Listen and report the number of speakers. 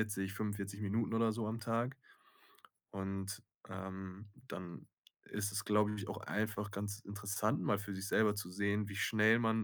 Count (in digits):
1